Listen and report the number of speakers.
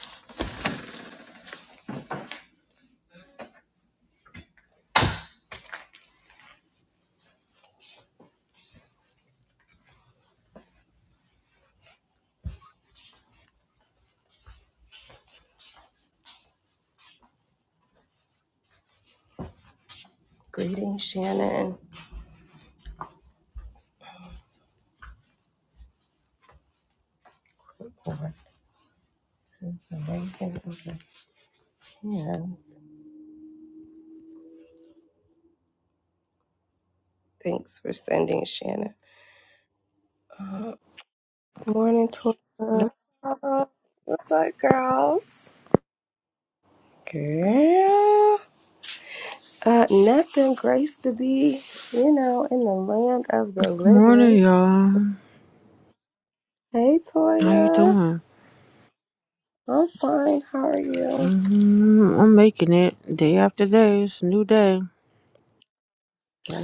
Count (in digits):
3